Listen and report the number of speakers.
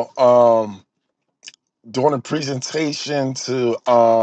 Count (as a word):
one